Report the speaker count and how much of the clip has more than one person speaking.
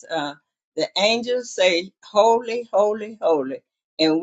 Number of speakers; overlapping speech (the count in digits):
1, no overlap